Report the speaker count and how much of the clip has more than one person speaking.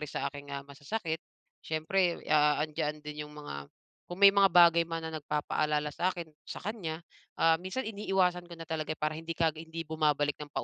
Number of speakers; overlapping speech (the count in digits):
1, no overlap